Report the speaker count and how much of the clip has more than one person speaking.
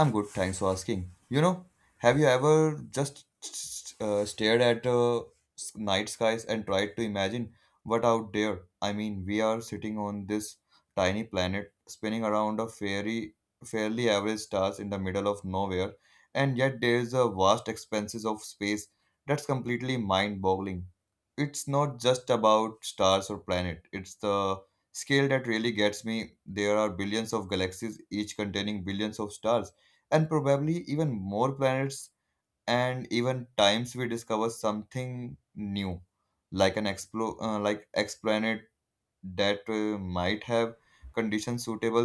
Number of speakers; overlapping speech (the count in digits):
1, no overlap